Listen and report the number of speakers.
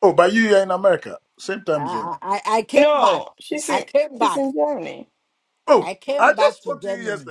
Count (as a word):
three